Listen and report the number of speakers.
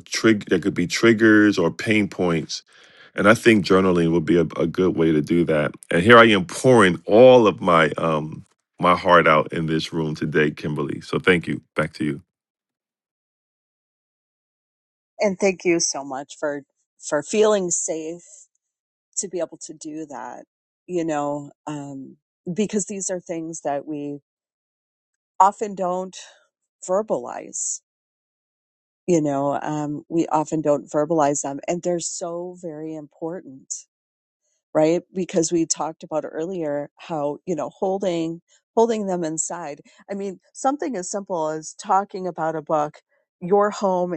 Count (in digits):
2